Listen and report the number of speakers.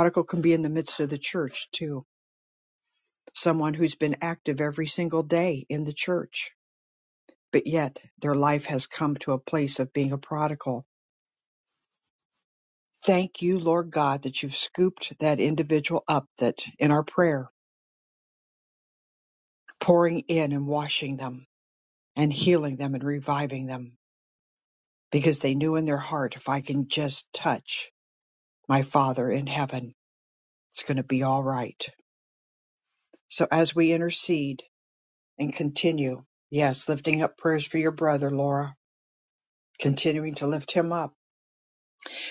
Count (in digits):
1